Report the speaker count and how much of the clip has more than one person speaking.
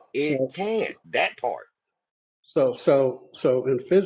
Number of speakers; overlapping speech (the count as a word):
two, about 7%